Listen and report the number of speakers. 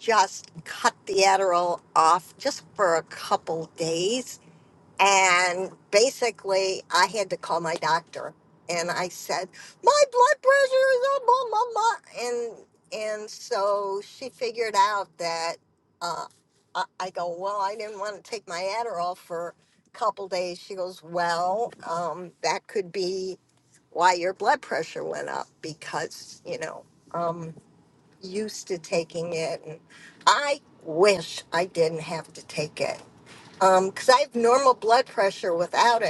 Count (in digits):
1